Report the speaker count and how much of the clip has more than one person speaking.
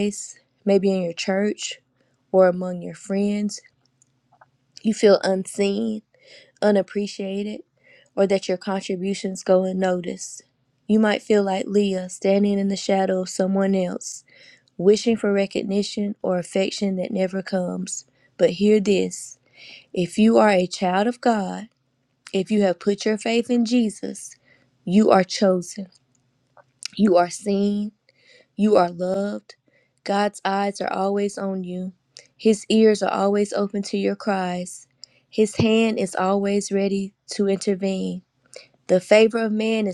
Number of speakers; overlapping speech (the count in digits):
1, no overlap